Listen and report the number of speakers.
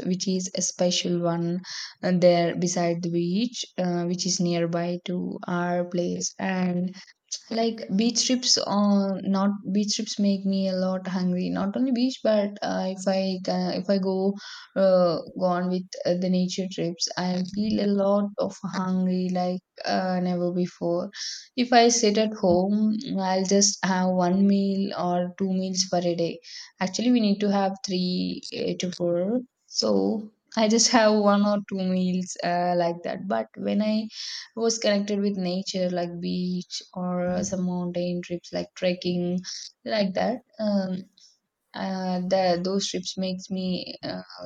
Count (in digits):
1